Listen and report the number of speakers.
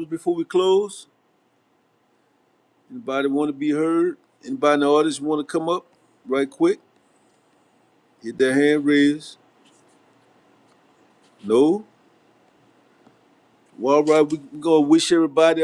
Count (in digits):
1